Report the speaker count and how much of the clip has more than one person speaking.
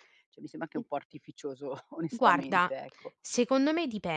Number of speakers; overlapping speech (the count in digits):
2, about 14%